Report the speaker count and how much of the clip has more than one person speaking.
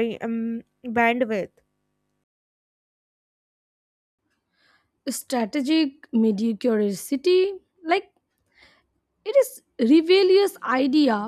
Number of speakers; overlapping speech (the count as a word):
two, no overlap